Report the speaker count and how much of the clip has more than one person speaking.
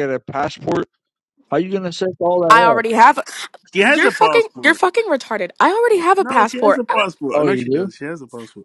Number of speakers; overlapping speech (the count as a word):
three, about 29%